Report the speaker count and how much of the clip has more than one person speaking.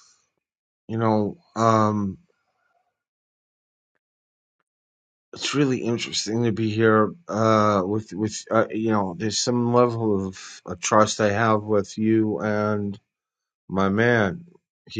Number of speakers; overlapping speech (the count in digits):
1, no overlap